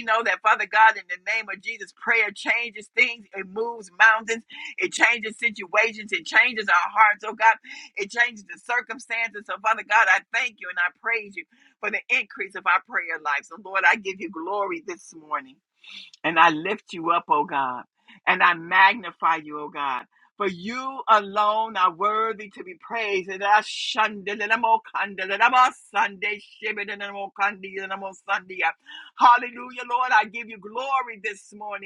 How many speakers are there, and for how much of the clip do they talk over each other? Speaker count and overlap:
one, no overlap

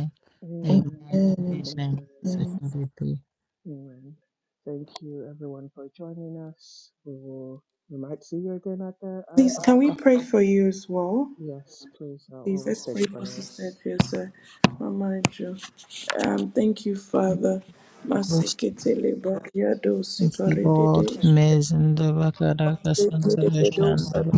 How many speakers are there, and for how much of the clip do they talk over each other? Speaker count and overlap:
three, about 26%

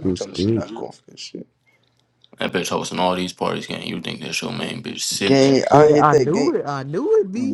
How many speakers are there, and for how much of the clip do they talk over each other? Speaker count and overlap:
three, about 28%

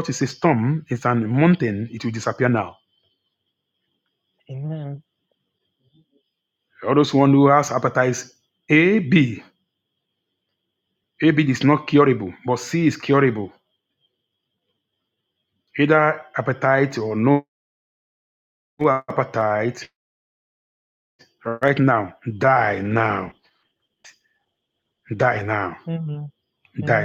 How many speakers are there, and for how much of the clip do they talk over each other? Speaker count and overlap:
two, about 1%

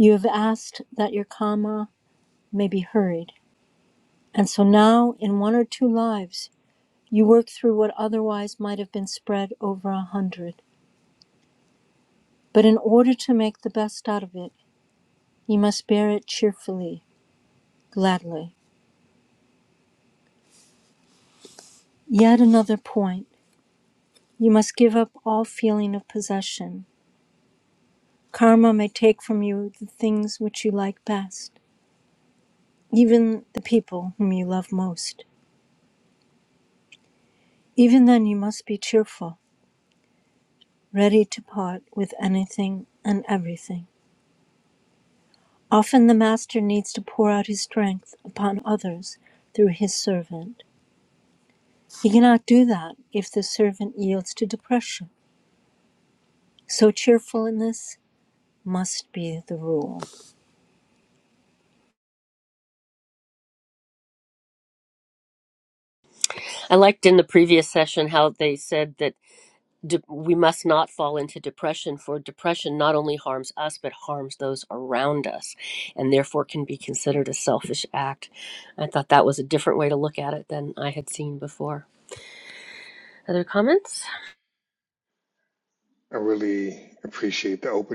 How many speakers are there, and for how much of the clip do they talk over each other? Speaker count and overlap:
three, no overlap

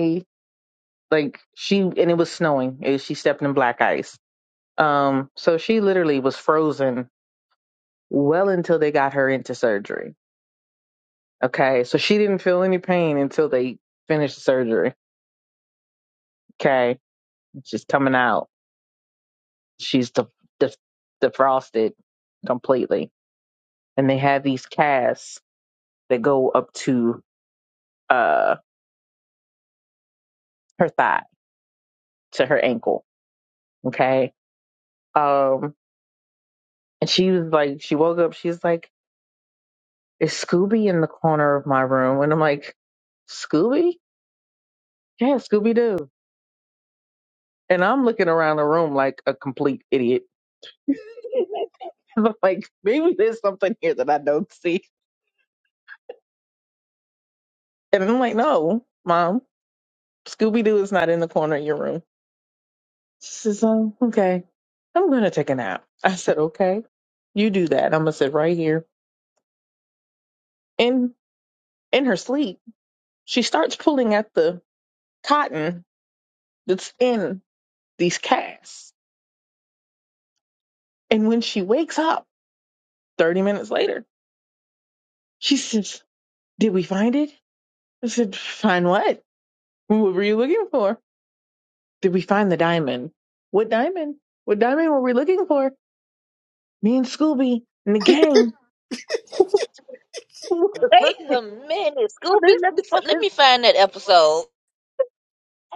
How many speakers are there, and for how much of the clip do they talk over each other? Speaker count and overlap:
two, about 1%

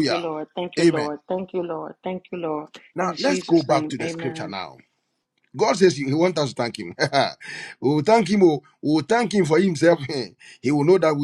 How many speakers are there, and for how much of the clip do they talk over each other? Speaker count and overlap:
two, about 19%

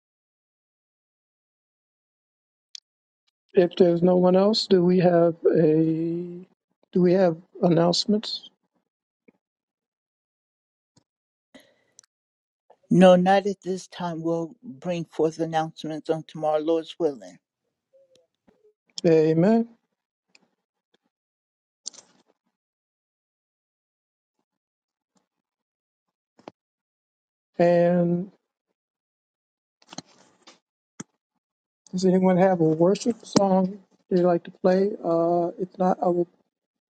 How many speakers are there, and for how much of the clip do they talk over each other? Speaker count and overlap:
two, no overlap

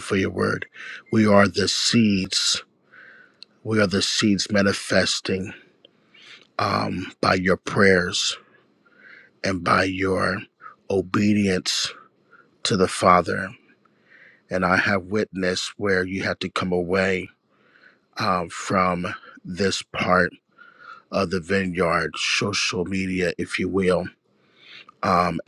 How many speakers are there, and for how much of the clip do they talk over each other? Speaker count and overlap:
one, no overlap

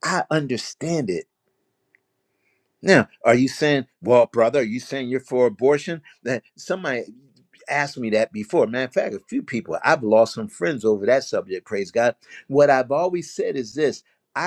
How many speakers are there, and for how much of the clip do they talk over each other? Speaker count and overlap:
one, no overlap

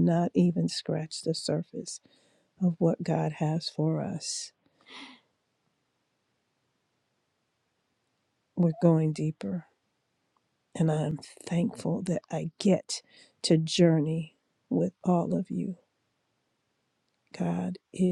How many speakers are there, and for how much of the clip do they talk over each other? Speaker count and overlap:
one, no overlap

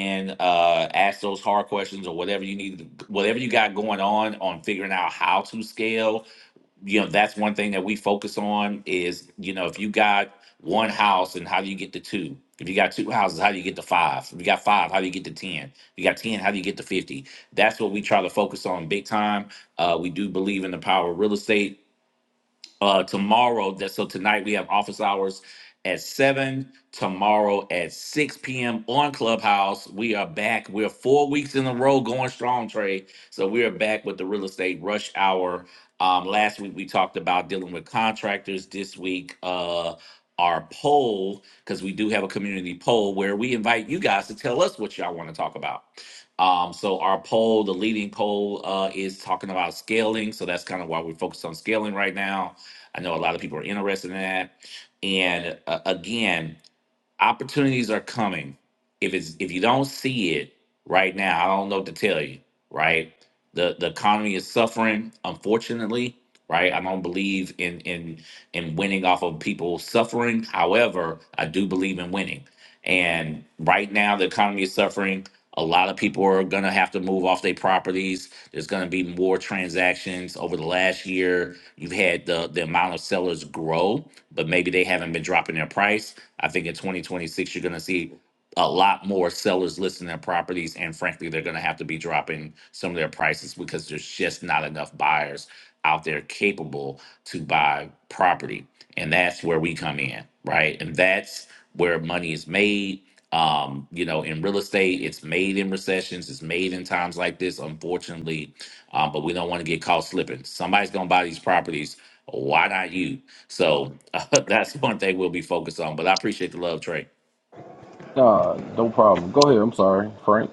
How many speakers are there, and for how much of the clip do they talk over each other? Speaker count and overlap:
two, no overlap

